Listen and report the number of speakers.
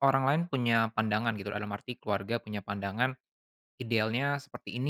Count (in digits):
1